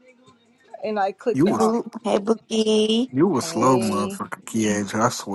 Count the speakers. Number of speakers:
3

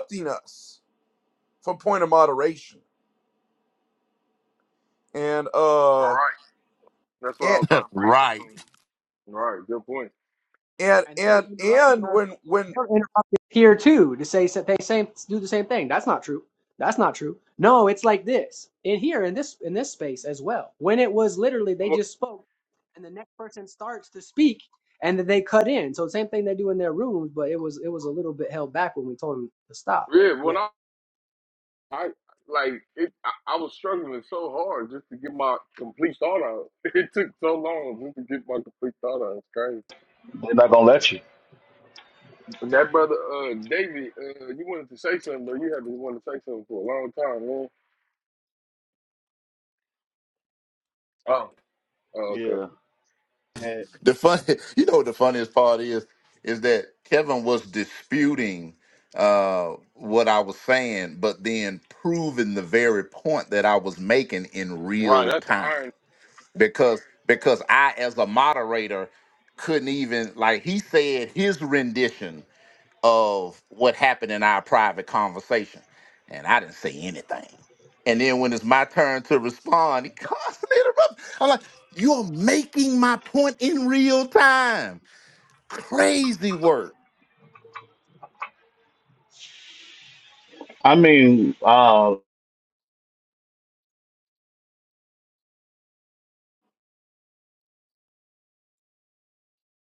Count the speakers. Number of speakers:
5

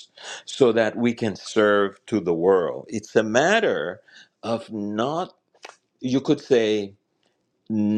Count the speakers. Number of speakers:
1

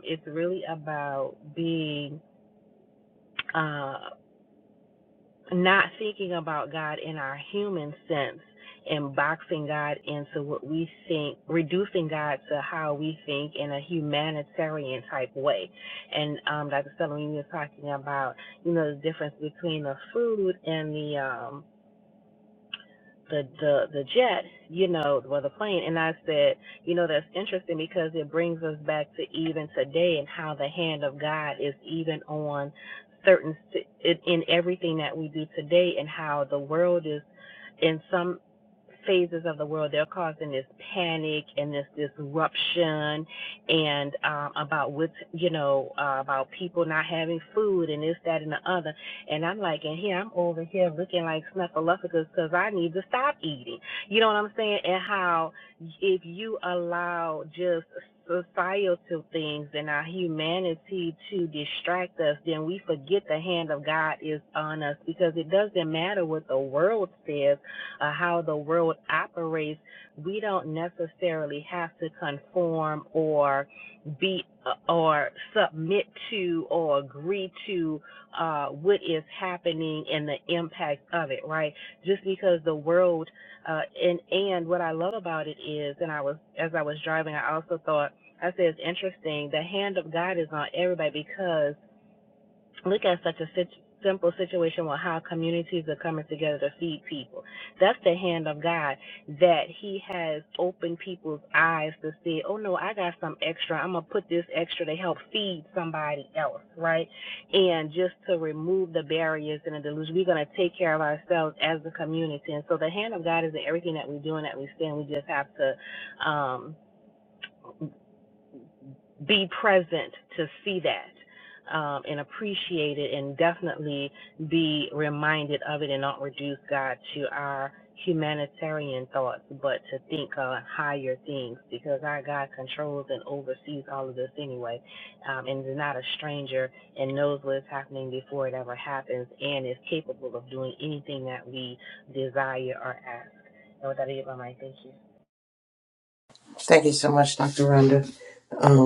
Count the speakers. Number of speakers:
2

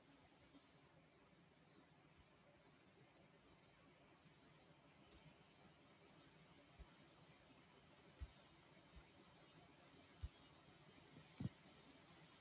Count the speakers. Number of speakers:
0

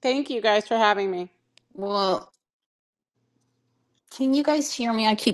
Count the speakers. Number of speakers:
2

